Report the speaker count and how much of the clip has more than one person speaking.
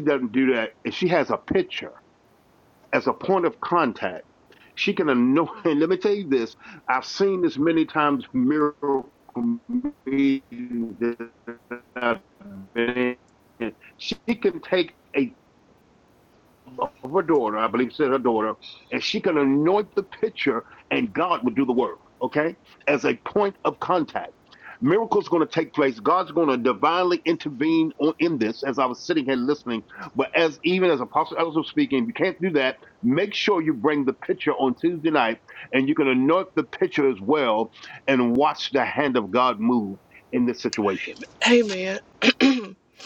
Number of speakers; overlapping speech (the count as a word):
two, no overlap